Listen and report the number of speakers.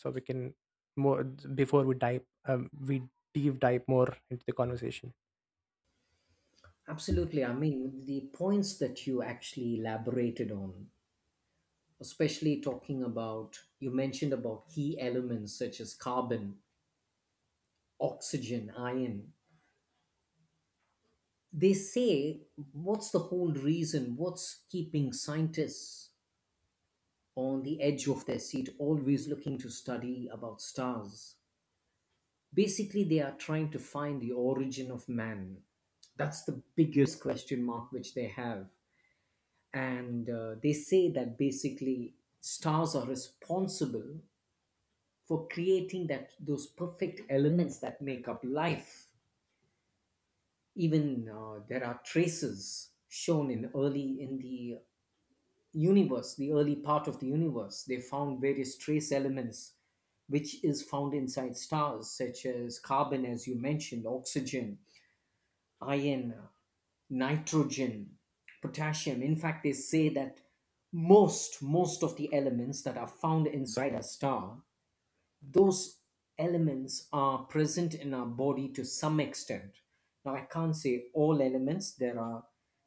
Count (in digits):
2